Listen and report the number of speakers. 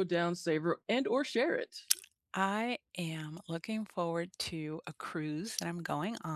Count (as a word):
two